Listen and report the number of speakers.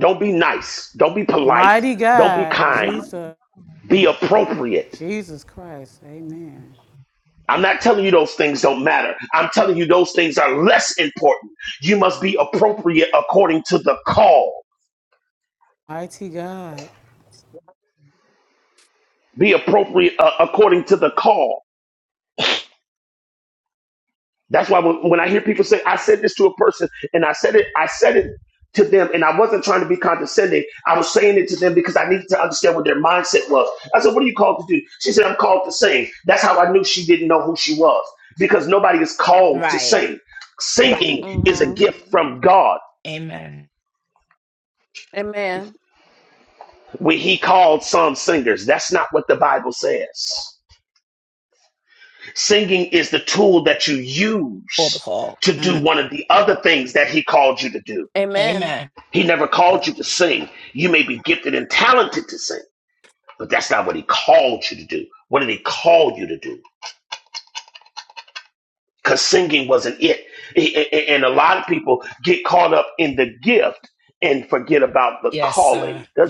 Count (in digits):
4